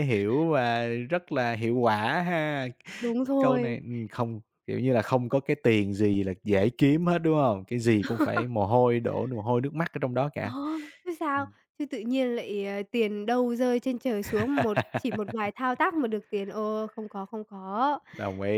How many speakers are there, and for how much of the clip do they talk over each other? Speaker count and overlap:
2, about 2%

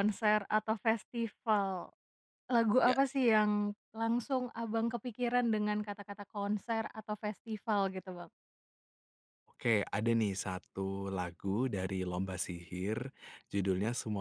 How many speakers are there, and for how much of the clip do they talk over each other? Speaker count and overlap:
2, about 1%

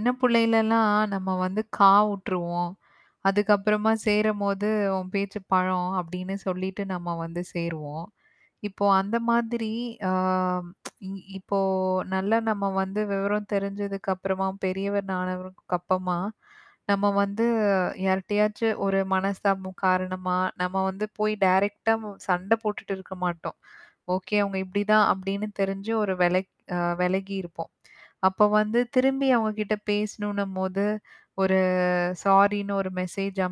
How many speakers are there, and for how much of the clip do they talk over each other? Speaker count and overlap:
1, no overlap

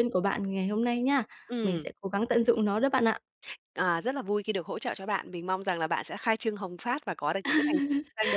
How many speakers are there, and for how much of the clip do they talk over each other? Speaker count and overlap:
2, about 3%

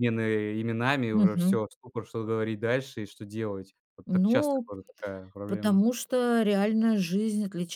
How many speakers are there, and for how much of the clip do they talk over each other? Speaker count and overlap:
2, about 16%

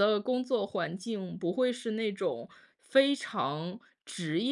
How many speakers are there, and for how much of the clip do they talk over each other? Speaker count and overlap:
1, no overlap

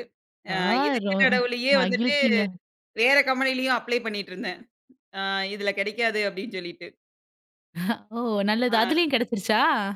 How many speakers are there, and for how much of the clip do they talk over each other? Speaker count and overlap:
2, about 11%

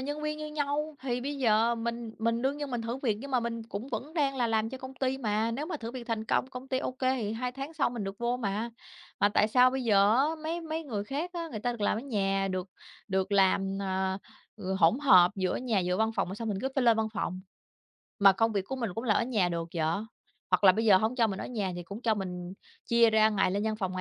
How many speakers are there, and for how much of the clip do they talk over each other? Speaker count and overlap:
1, no overlap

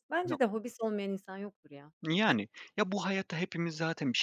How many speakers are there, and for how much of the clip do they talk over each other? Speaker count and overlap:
2, about 3%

